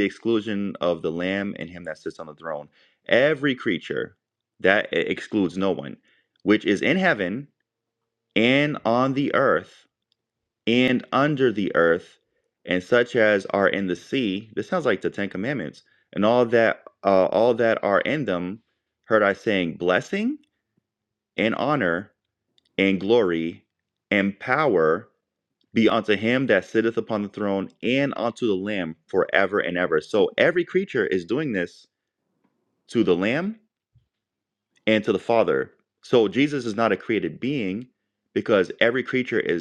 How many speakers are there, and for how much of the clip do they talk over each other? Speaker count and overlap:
1, no overlap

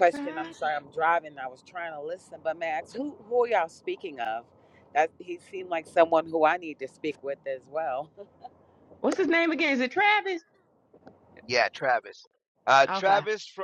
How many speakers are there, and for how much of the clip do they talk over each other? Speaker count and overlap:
3, about 7%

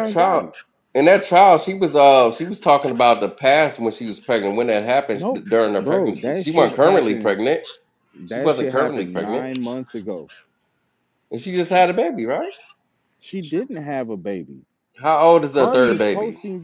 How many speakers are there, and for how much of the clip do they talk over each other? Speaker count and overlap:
2, about 27%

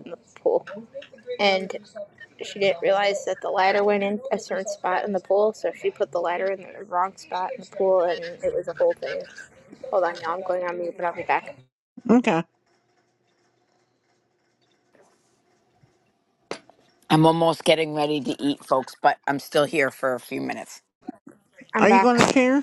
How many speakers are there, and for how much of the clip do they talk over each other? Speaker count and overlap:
3, about 2%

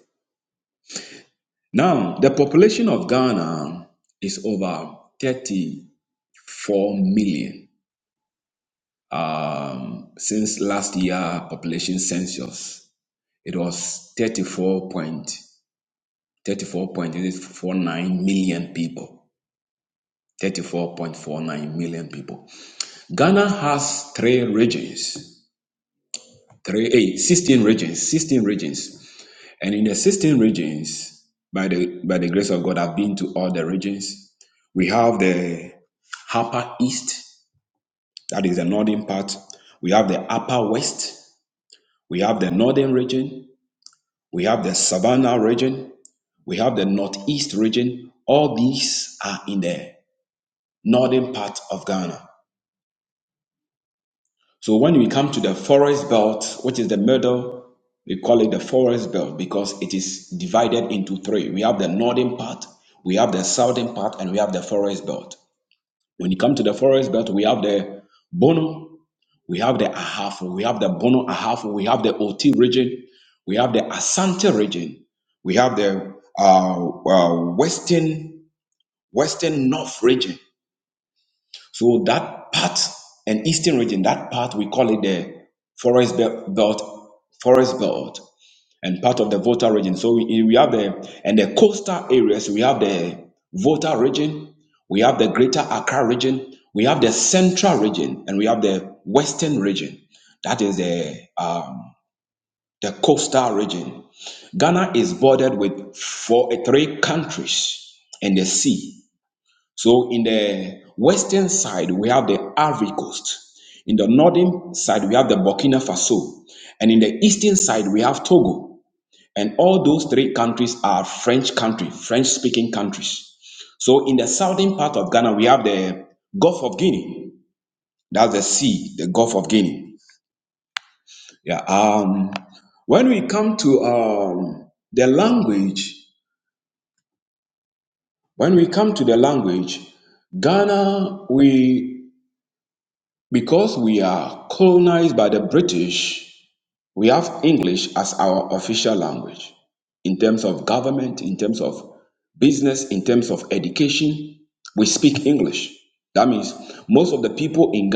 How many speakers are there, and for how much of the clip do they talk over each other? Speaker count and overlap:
1, no overlap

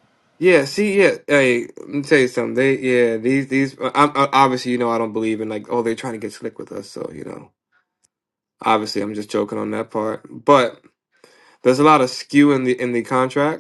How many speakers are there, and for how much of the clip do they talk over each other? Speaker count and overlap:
1, no overlap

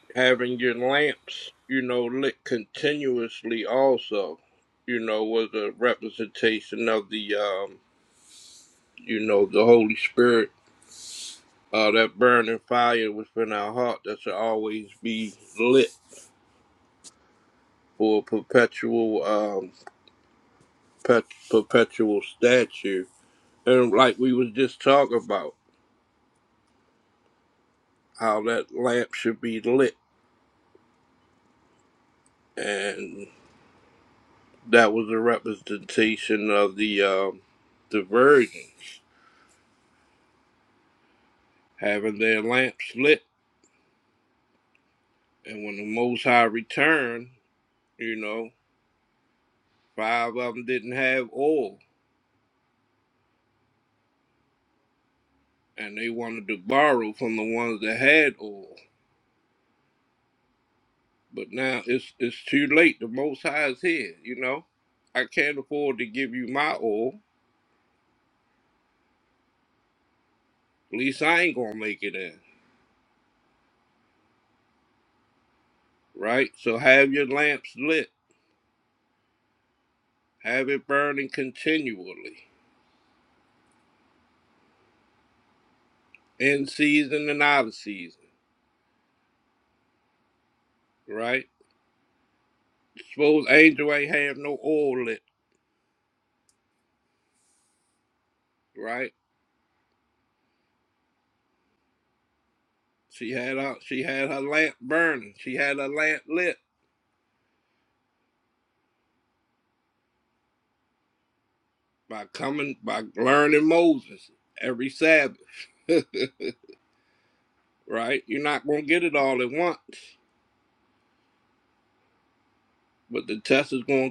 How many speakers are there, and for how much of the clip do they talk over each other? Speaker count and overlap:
1, no overlap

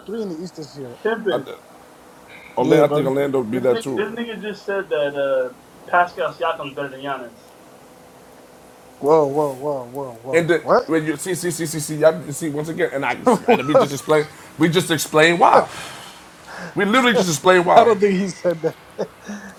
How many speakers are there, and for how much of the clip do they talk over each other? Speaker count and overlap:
3, about 13%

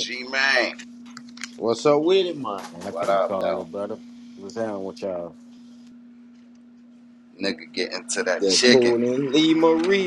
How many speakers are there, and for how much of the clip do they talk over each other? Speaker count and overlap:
3, about 16%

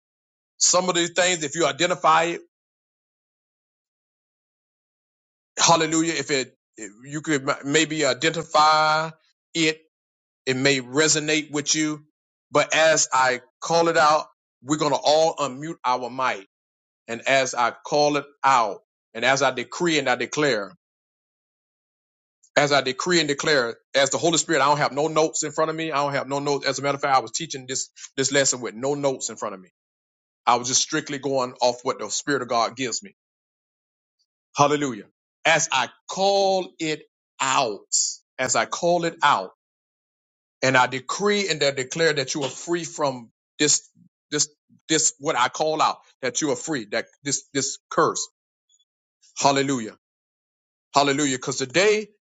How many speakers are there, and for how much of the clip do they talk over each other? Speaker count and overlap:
1, no overlap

